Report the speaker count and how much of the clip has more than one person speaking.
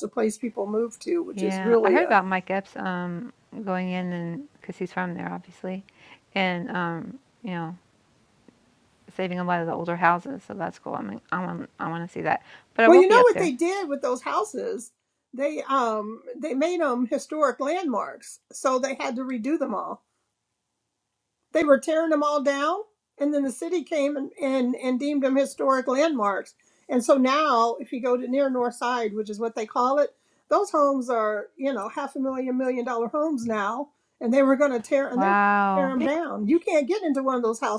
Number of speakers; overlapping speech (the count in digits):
2, about 5%